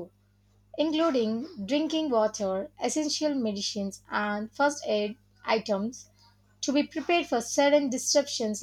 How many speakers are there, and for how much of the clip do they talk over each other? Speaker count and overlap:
1, no overlap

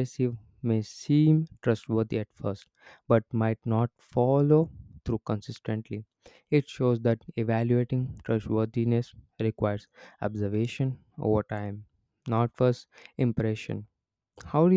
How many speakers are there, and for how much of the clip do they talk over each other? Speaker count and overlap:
1, no overlap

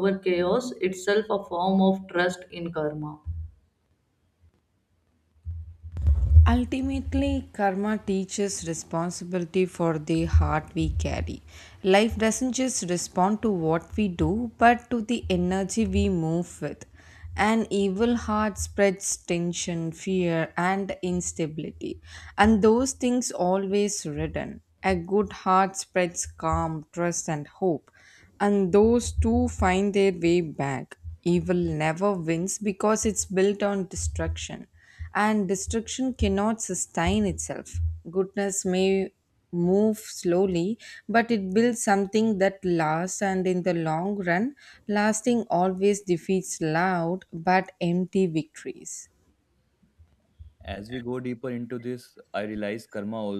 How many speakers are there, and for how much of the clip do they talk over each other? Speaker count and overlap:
3, no overlap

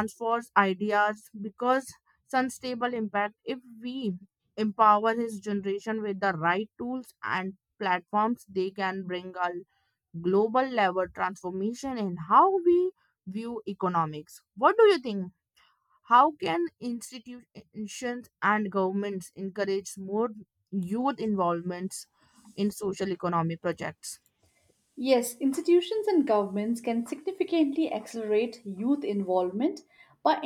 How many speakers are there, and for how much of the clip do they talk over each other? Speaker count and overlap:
2, no overlap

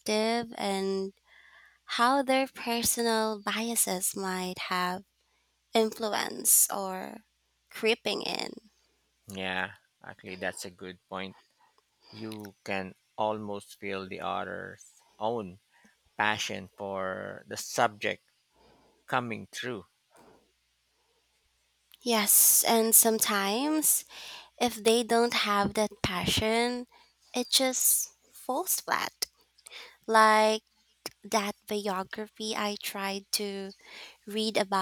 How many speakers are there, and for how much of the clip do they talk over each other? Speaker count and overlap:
2, no overlap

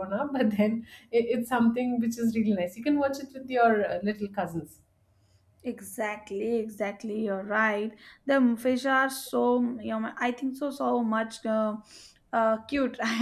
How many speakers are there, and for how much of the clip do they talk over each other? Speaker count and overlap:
2, no overlap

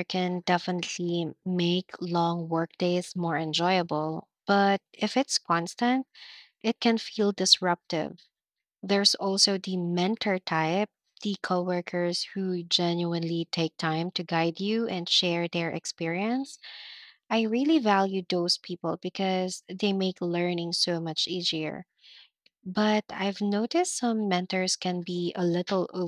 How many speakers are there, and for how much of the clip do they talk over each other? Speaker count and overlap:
1, no overlap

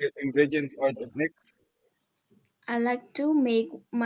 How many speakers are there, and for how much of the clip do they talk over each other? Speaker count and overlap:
2, no overlap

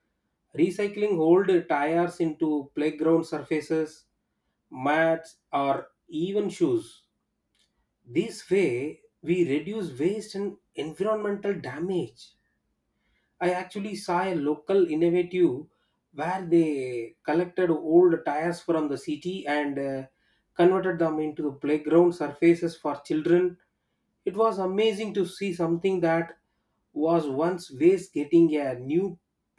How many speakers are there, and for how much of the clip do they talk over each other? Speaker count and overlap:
1, no overlap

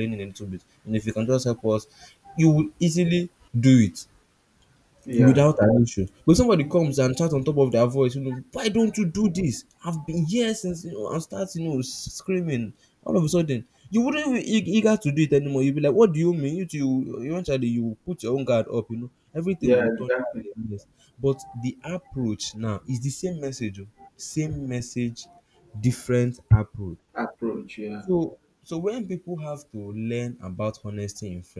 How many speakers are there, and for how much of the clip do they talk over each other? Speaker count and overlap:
2, about 4%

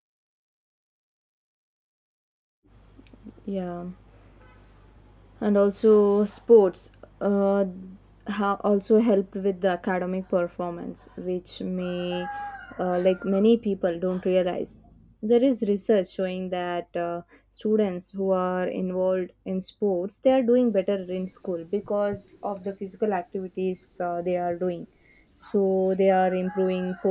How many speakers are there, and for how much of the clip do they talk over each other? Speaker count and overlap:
1, no overlap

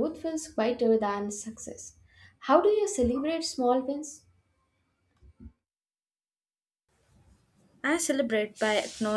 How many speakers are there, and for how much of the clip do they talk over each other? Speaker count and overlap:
2, no overlap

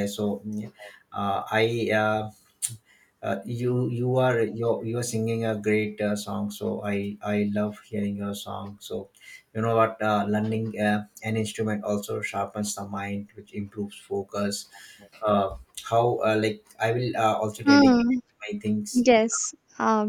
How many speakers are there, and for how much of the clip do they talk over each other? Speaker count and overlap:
2, about 3%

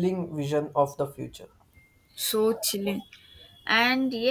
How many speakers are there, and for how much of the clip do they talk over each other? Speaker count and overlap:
2, no overlap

